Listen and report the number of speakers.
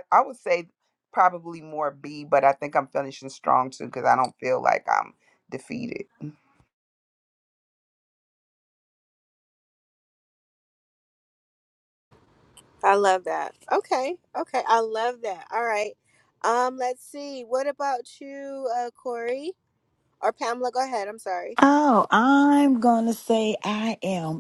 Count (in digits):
3